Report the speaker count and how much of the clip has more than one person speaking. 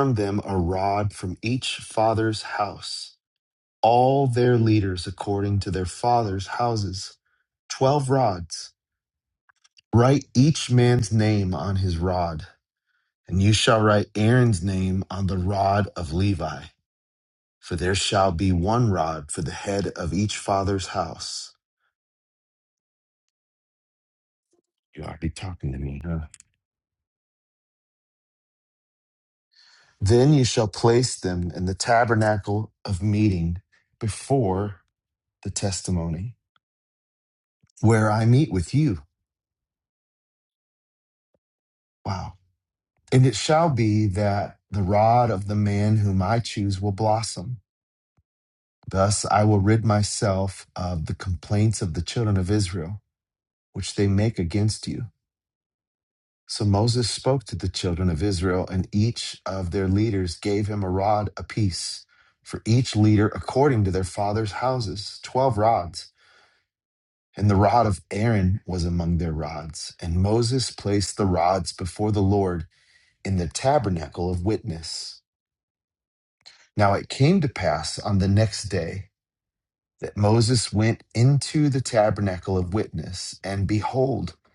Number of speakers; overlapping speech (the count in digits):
1, no overlap